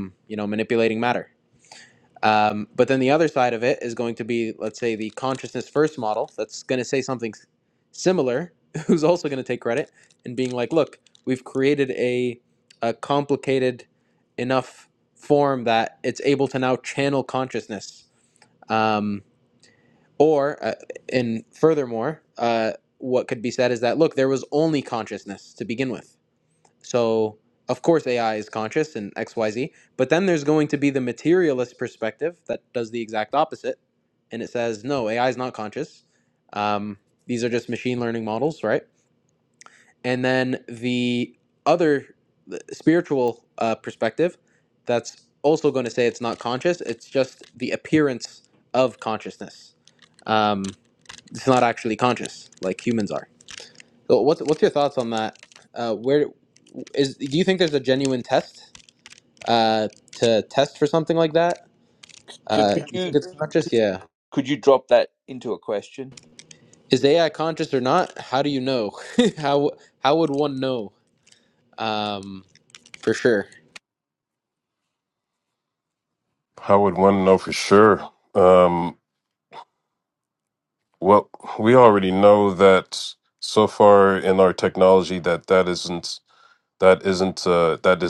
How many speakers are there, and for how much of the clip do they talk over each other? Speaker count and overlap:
three, about 1%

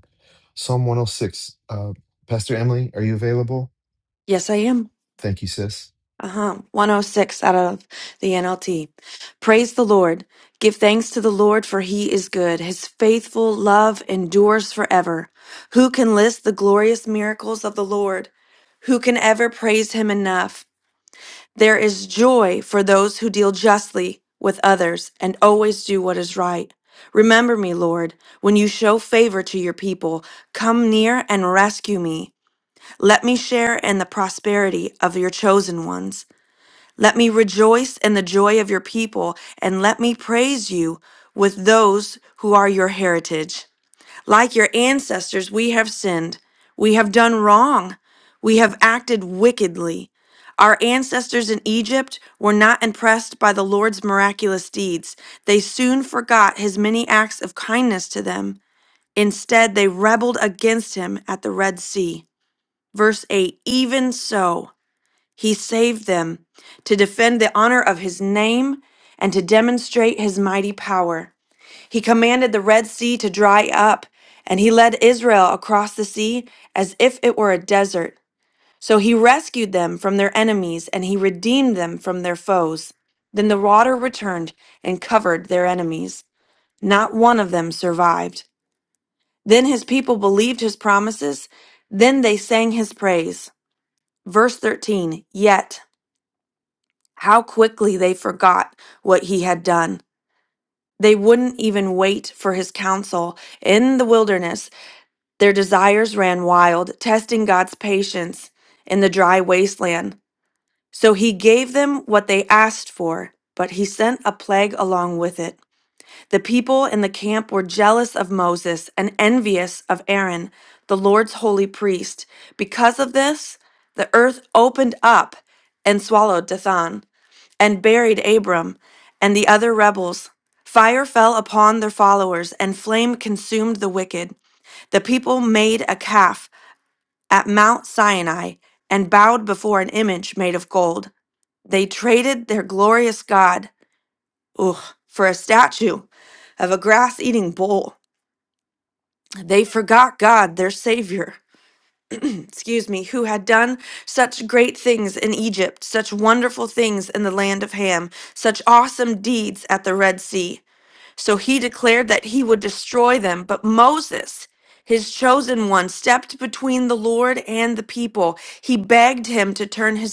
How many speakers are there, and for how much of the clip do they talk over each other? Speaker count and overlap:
two, no overlap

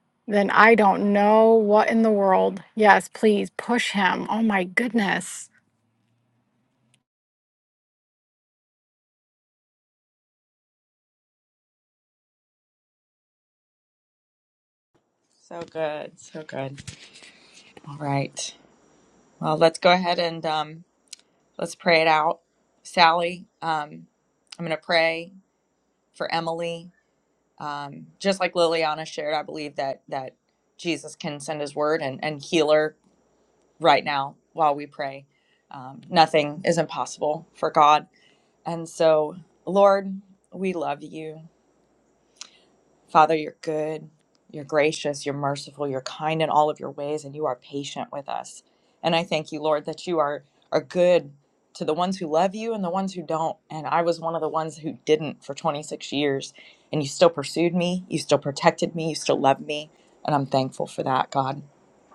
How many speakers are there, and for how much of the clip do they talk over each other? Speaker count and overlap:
two, no overlap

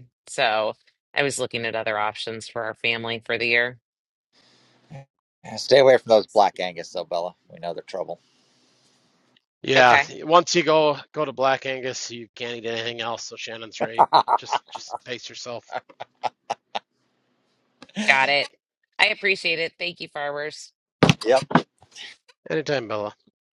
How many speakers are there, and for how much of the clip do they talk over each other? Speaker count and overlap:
three, about 1%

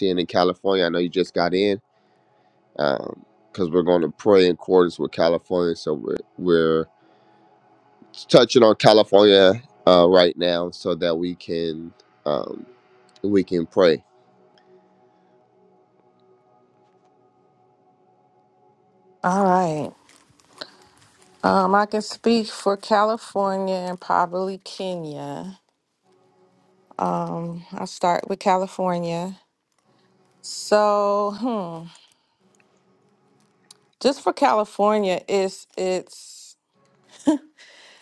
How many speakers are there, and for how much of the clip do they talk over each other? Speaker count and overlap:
two, no overlap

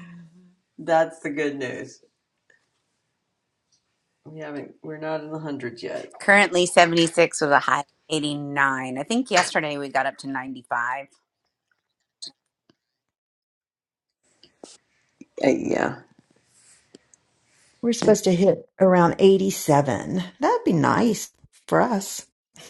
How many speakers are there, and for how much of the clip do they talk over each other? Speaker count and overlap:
three, no overlap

